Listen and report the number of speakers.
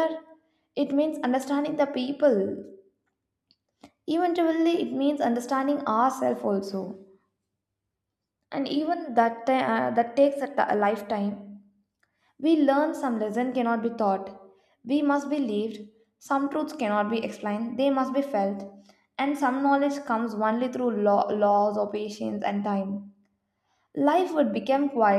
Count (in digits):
1